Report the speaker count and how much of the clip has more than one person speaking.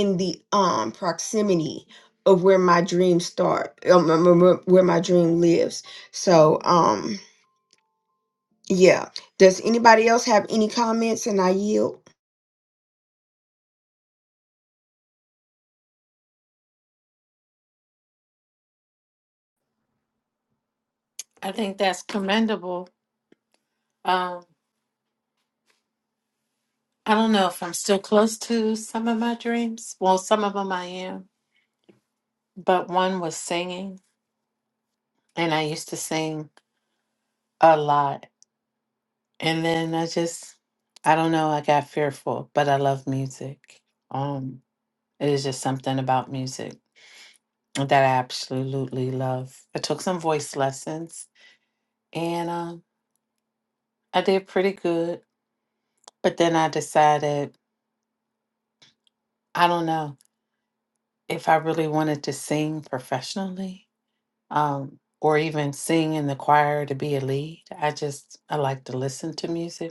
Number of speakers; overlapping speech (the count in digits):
2, no overlap